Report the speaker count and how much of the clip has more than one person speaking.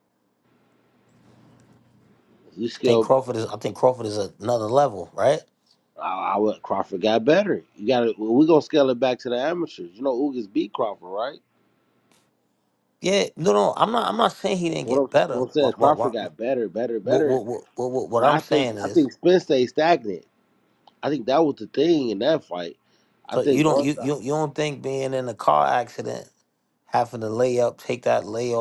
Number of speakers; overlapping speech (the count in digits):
2, about 12%